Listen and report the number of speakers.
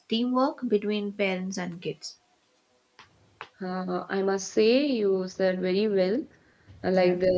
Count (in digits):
2